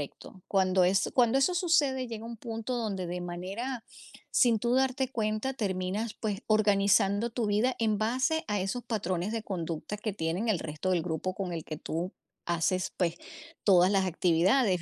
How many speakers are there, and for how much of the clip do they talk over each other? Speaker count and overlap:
1, no overlap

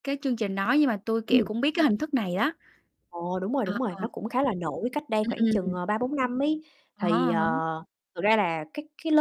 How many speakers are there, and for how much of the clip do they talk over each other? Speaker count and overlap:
2, about 19%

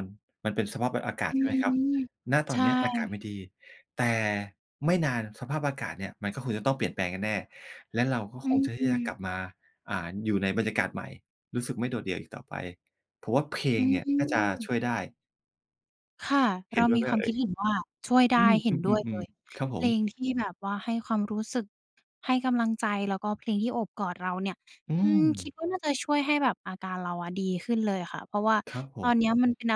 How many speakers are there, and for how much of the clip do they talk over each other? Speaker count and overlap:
2, about 12%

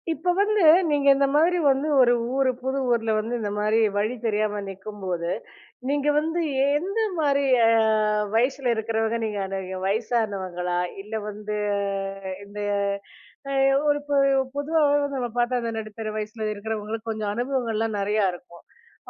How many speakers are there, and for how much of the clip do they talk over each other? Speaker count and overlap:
1, no overlap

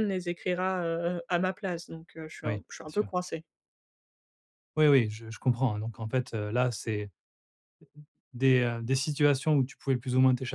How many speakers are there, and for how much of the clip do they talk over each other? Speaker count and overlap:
2, about 3%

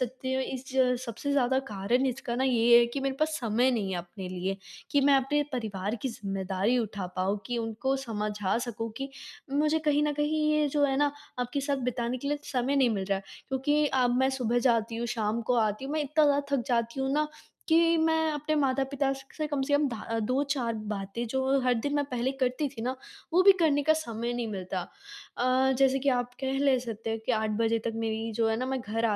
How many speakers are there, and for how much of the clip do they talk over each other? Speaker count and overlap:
1, no overlap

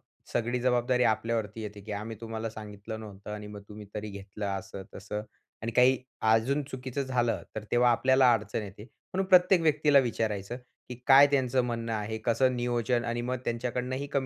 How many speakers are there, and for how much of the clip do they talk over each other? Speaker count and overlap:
1, no overlap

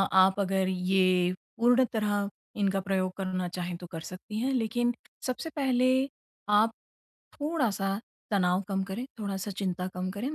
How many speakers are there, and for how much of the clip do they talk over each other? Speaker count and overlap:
1, no overlap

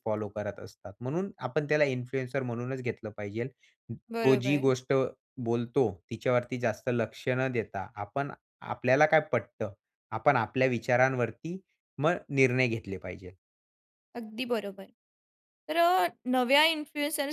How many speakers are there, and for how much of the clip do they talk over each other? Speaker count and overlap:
2, about 3%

